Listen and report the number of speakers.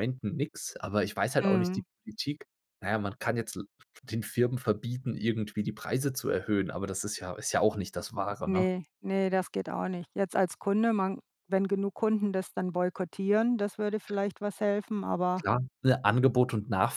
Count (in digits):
2